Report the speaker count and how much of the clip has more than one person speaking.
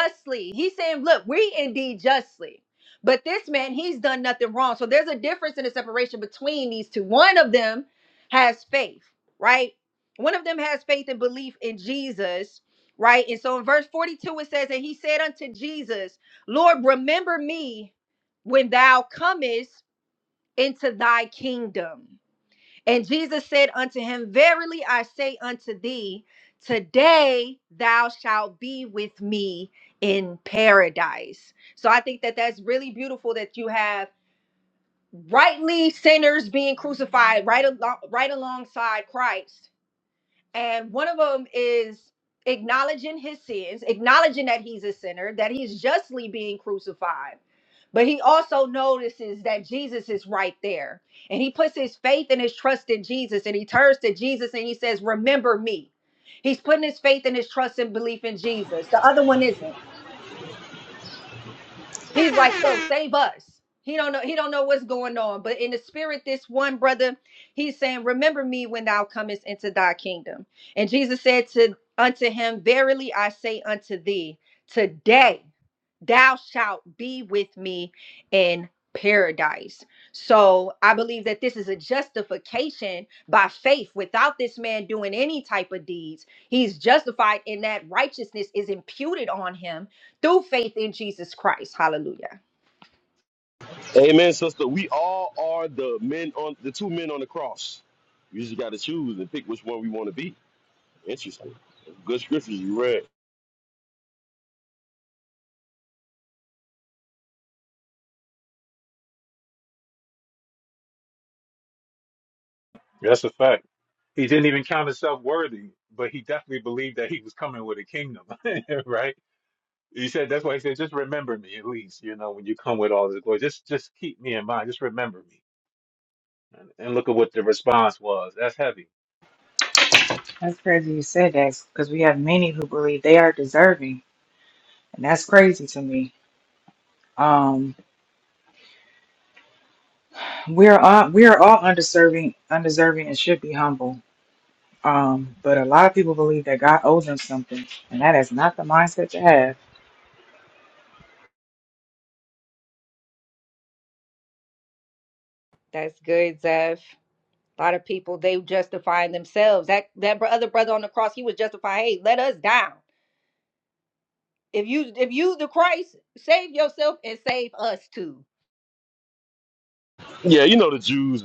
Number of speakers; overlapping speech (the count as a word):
four, no overlap